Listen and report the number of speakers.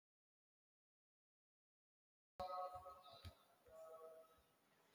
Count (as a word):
zero